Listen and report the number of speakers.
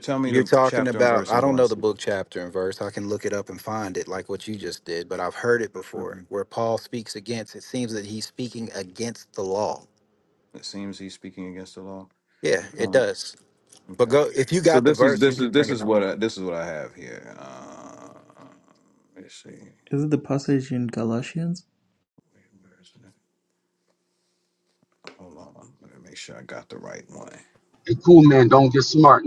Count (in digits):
4